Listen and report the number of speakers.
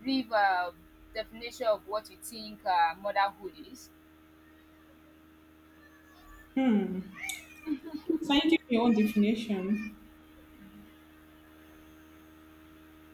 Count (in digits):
2